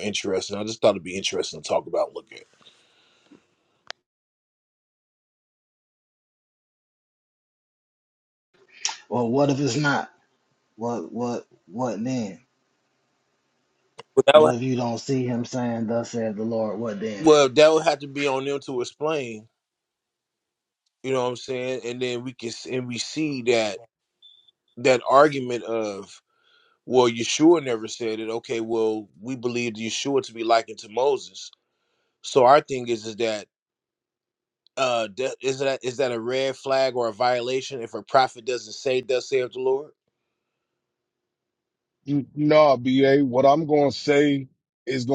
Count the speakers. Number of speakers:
three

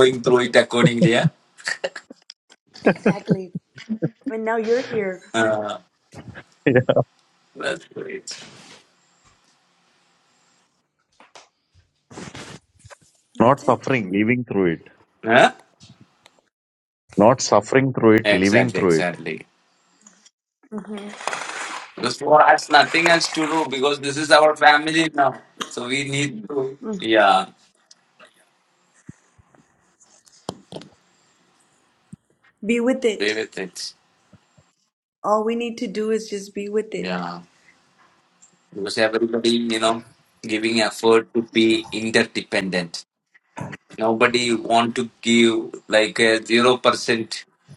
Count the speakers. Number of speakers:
three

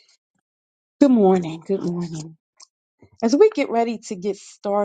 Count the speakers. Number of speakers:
one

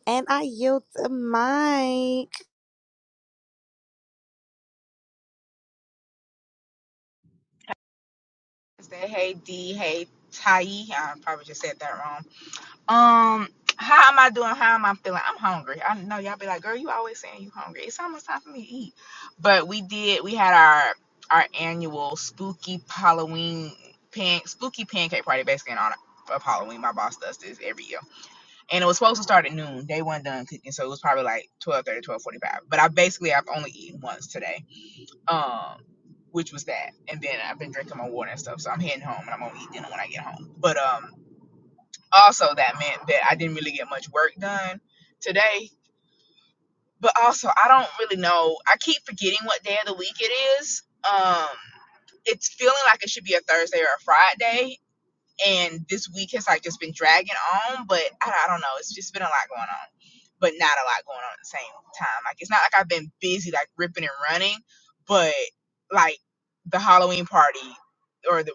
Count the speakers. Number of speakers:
two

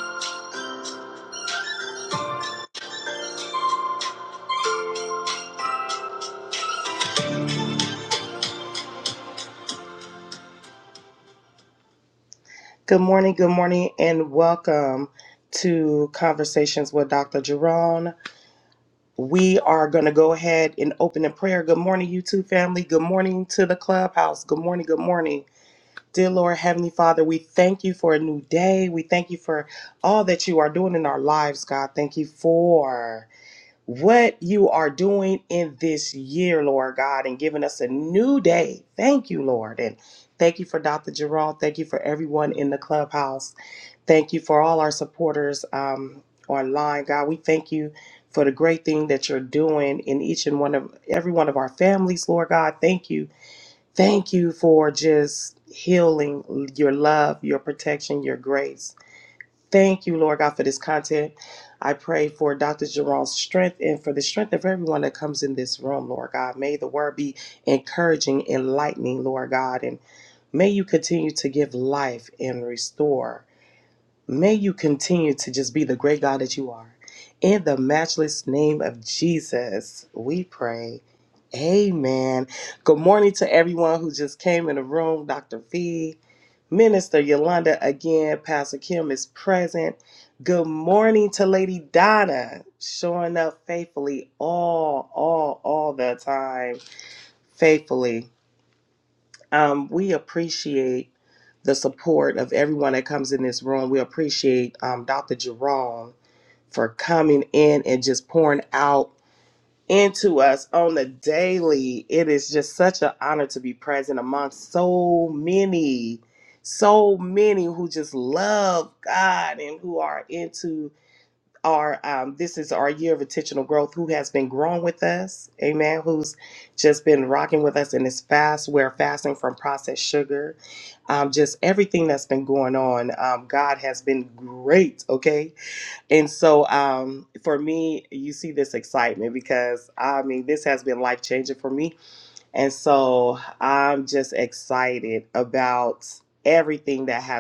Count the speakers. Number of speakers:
one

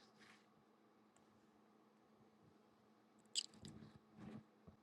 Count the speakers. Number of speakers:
zero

